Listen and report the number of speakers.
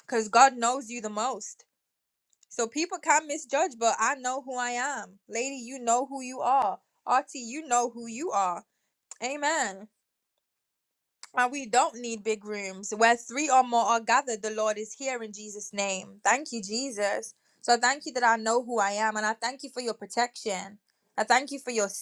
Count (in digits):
1